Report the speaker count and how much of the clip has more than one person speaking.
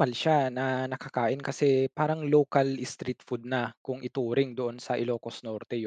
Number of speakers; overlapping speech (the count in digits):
1, no overlap